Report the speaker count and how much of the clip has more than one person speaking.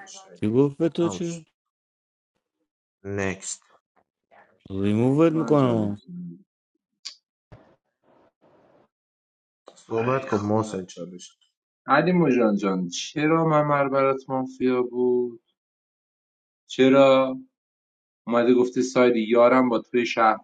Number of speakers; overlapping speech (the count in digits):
3, about 7%